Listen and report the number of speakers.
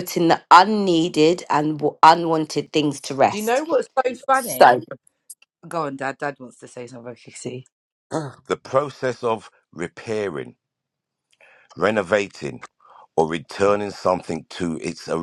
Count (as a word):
three